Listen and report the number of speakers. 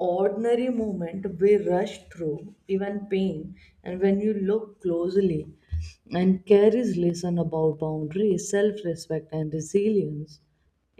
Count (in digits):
1